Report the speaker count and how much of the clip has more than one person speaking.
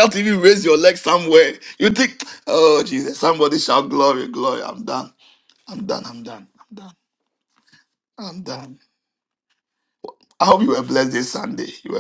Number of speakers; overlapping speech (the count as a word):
one, no overlap